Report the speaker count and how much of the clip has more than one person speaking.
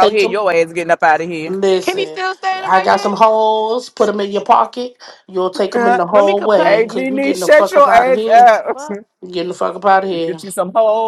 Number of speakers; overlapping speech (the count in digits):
3, about 37%